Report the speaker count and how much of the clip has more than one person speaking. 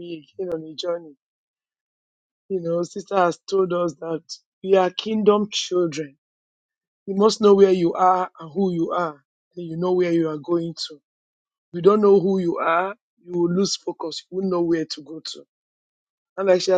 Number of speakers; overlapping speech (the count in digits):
1, no overlap